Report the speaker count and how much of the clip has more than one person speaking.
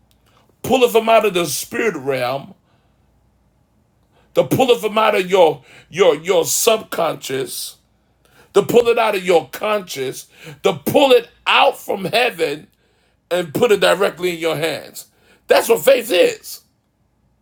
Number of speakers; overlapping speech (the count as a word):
one, no overlap